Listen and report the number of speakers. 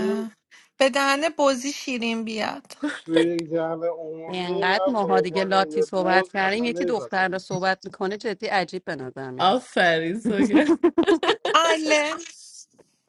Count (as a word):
four